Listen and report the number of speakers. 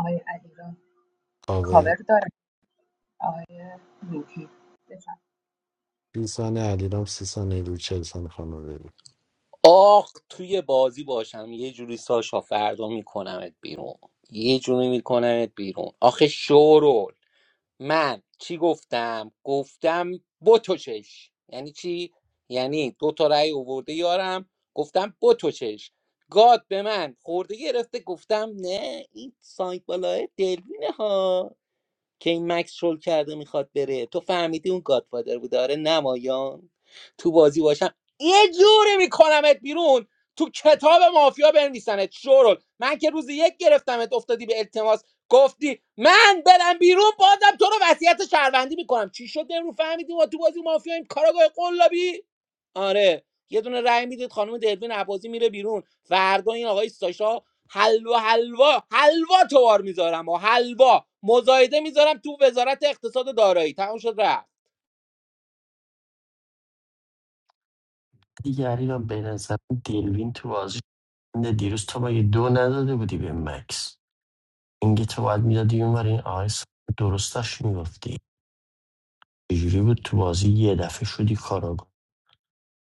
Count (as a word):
four